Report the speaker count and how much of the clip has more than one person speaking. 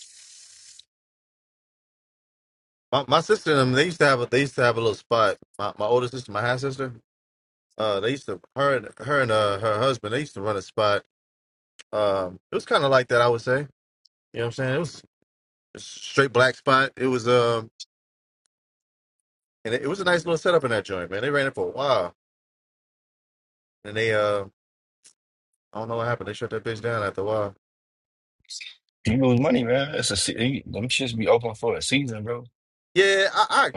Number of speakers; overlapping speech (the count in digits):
2, under 1%